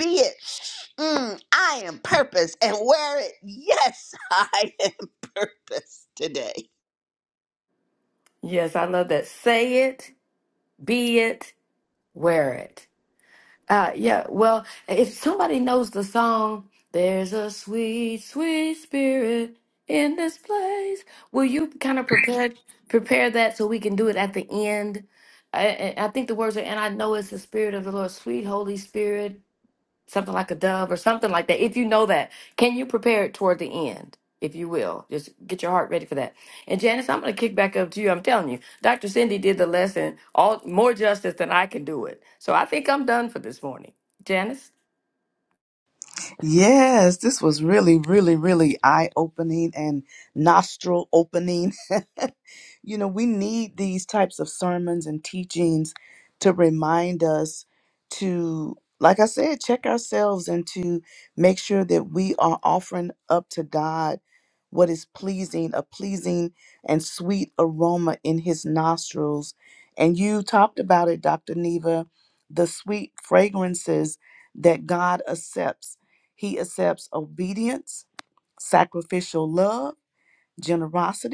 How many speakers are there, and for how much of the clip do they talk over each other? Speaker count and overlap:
three, no overlap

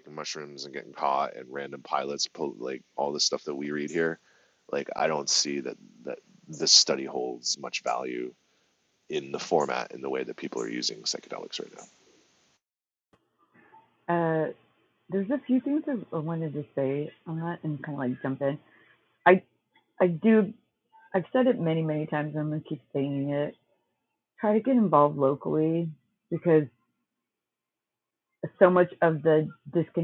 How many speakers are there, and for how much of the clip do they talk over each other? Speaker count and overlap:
two, no overlap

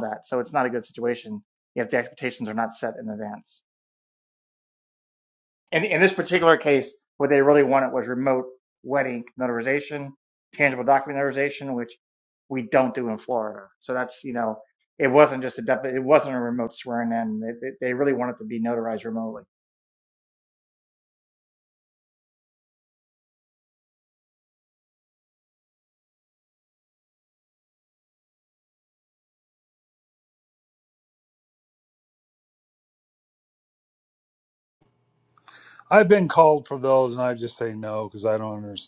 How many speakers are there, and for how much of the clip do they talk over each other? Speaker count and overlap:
two, no overlap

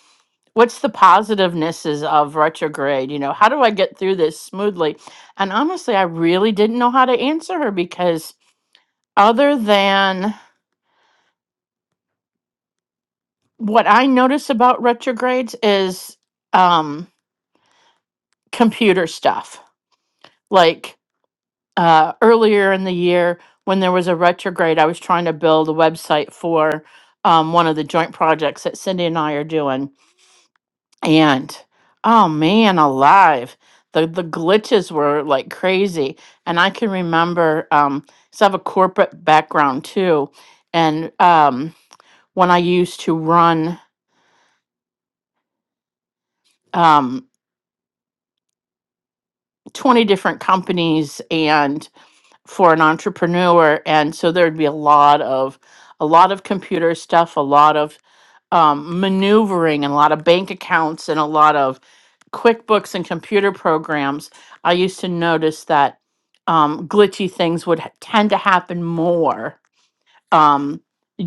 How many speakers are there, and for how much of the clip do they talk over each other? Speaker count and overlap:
one, no overlap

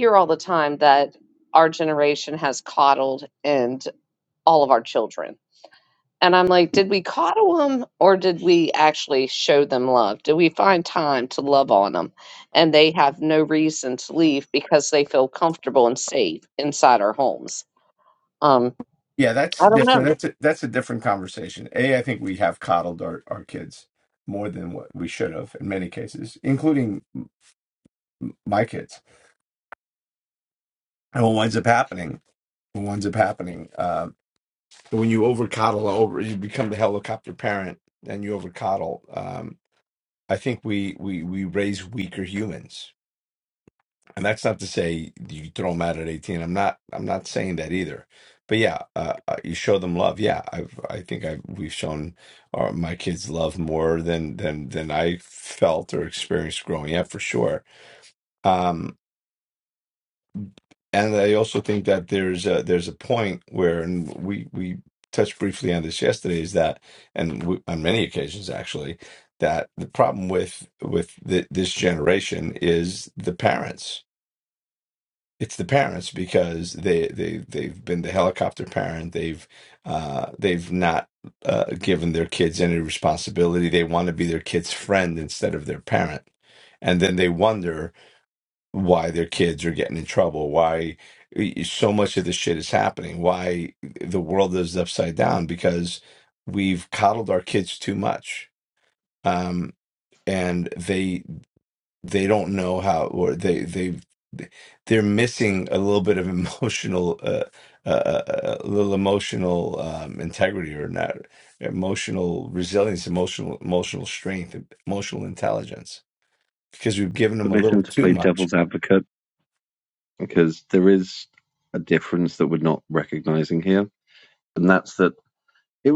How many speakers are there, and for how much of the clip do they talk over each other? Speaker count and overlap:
three, about 1%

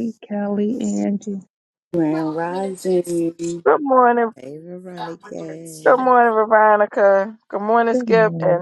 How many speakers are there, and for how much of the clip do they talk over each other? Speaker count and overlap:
four, about 8%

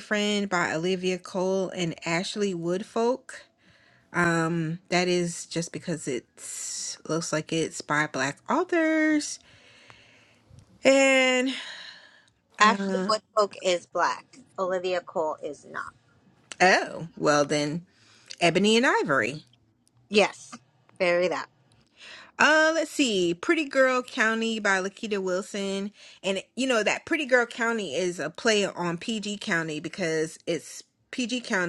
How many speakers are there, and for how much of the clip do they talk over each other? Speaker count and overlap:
two, about 2%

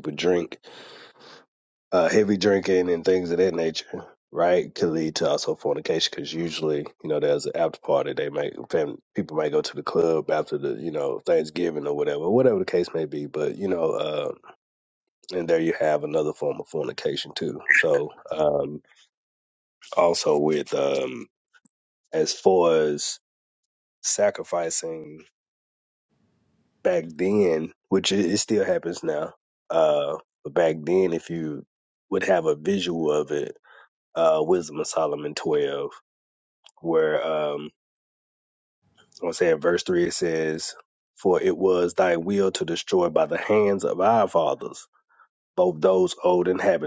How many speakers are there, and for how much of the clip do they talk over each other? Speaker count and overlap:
one, no overlap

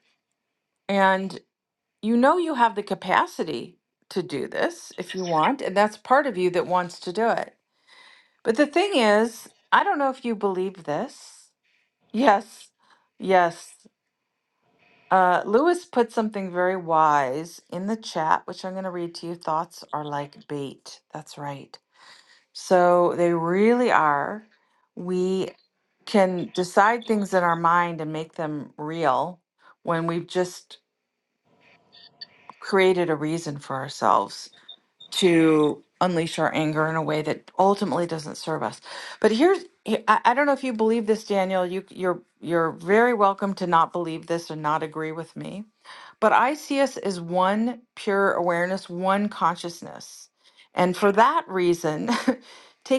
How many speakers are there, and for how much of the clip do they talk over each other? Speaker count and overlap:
one, no overlap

